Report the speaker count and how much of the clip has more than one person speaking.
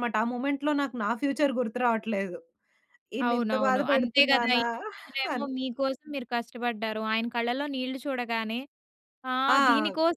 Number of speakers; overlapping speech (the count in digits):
2, about 21%